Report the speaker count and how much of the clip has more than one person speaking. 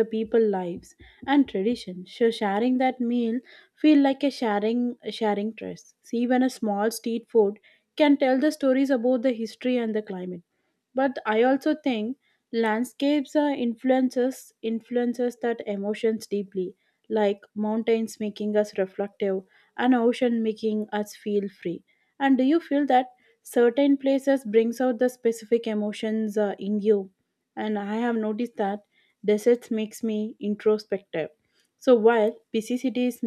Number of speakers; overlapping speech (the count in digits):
1, no overlap